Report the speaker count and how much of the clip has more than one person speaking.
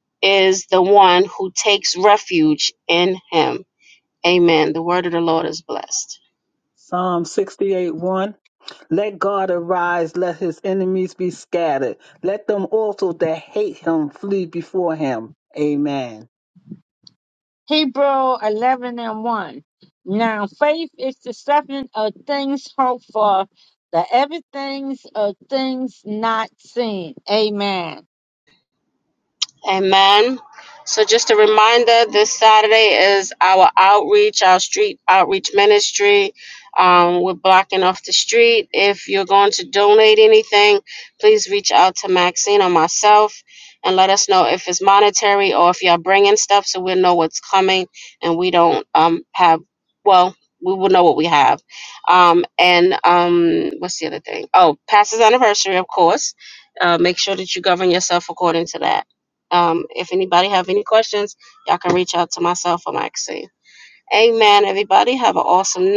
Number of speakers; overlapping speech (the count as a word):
three, no overlap